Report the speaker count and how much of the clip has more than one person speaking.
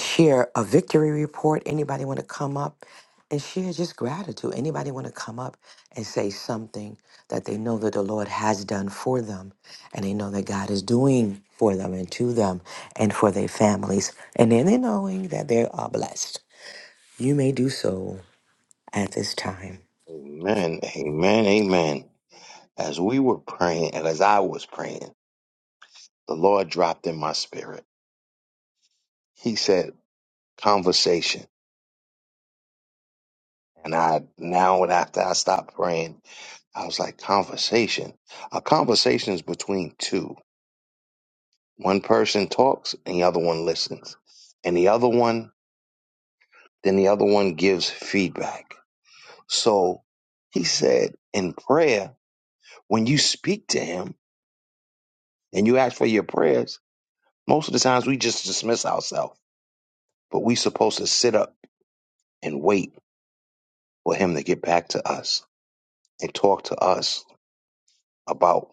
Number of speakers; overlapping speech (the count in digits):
2, no overlap